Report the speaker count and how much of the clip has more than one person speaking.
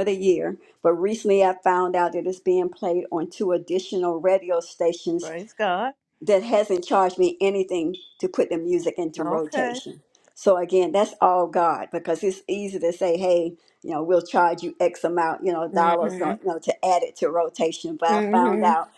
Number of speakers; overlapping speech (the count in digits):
2, about 11%